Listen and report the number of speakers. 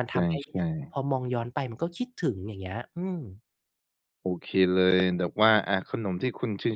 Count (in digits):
2